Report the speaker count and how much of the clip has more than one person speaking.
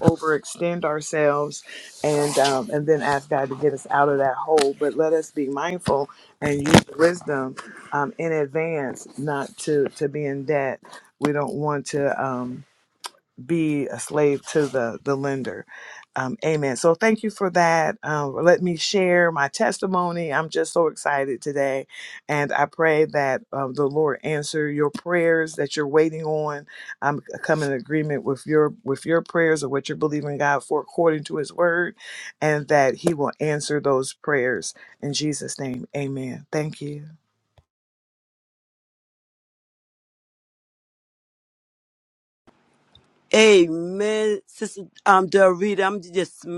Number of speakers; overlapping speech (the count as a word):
two, no overlap